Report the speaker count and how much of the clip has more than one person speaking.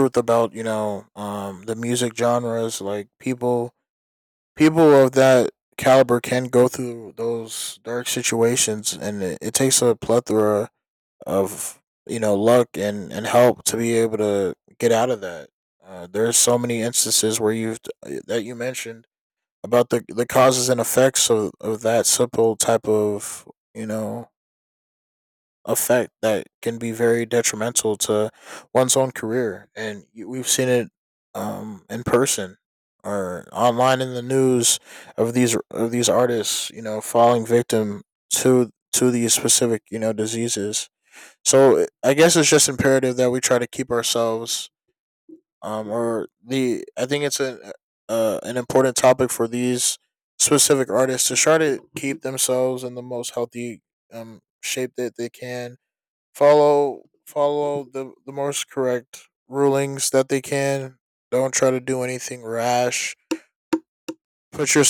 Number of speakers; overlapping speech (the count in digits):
1, no overlap